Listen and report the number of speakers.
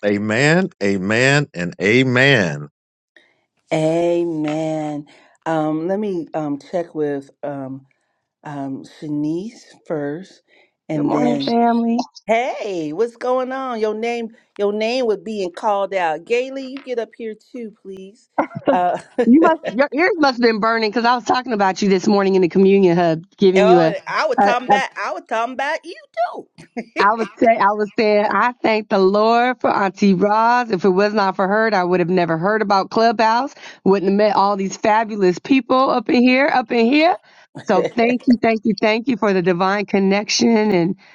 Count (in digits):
3